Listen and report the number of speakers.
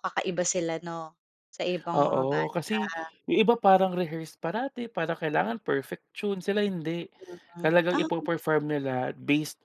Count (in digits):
2